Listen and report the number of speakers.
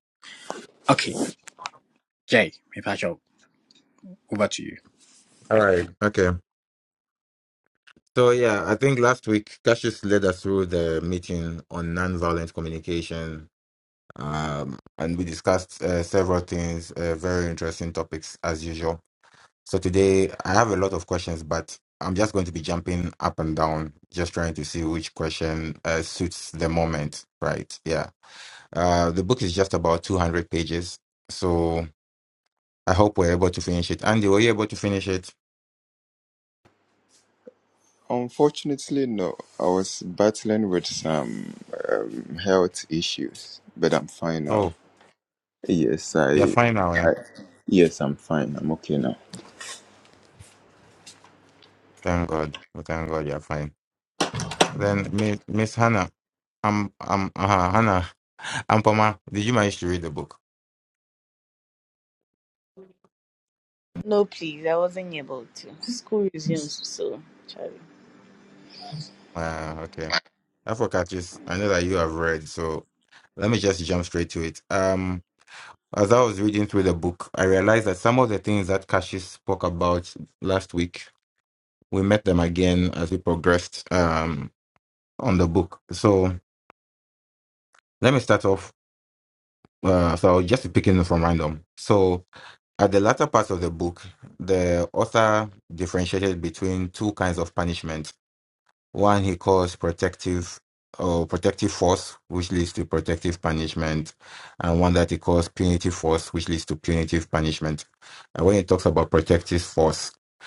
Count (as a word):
four